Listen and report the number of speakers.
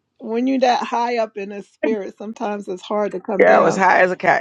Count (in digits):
2